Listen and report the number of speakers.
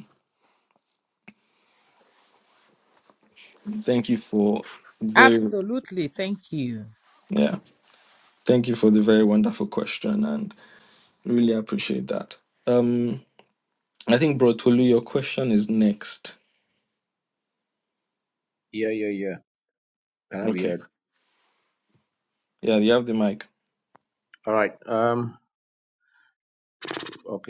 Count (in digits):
3